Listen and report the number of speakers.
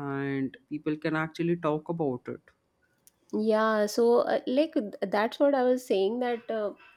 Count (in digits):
2